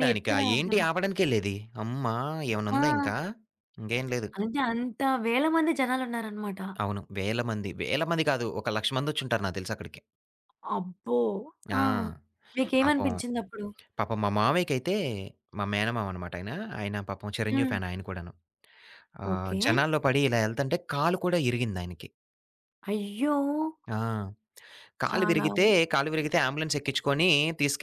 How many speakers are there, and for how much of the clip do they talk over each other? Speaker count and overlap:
2, about 10%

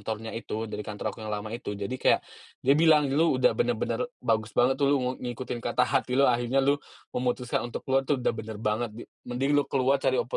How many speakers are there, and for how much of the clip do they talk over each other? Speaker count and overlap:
1, no overlap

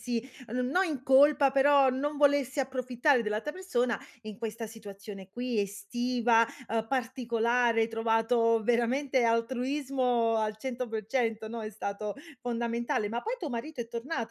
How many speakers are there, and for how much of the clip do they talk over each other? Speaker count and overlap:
1, no overlap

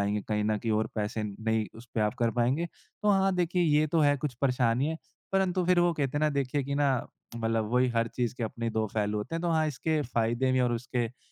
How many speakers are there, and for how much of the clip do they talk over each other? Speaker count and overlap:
1, no overlap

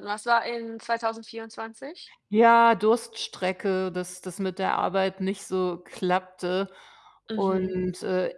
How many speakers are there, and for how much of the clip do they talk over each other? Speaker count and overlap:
2, about 4%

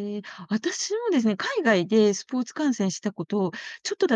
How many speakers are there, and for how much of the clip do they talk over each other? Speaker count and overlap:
1, no overlap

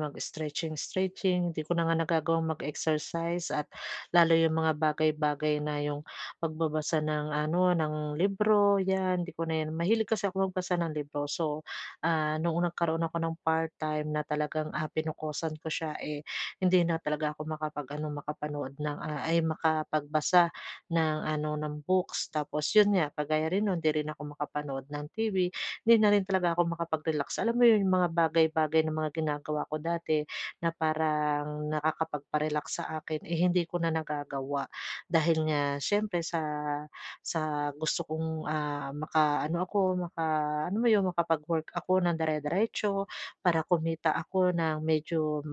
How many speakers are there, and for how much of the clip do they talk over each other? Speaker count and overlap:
1, no overlap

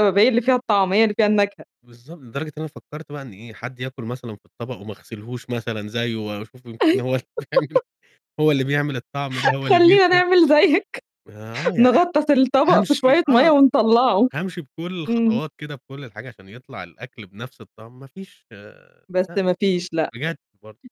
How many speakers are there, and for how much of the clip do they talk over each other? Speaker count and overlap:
2, about 10%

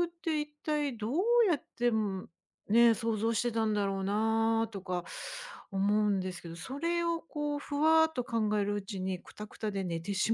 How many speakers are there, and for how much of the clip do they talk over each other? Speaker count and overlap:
1, no overlap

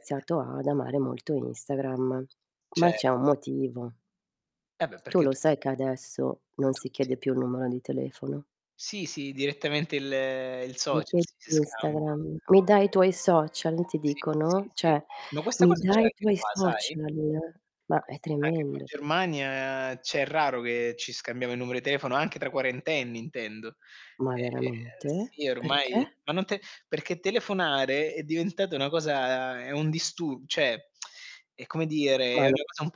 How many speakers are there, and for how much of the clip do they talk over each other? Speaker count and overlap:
2, about 20%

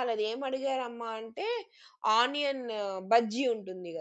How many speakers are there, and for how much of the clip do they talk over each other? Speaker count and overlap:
1, no overlap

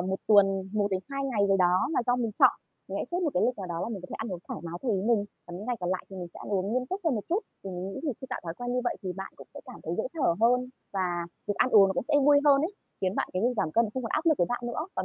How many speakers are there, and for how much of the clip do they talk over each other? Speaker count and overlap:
1, no overlap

